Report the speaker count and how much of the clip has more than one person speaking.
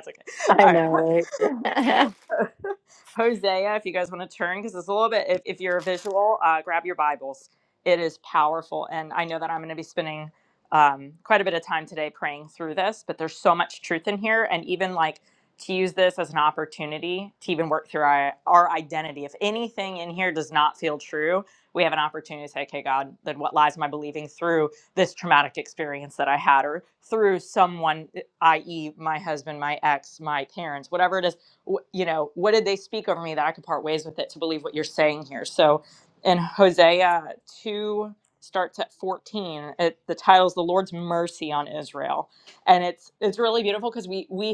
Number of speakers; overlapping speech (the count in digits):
2, about 1%